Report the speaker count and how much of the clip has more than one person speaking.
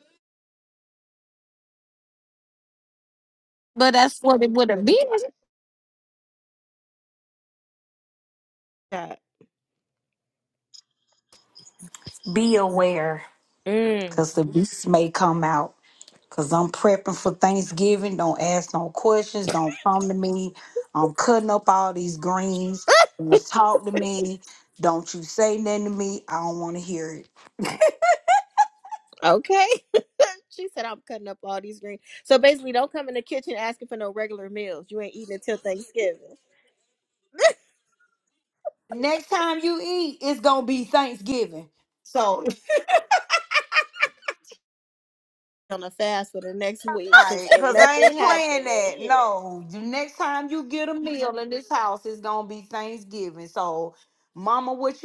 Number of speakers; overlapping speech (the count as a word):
three, about 4%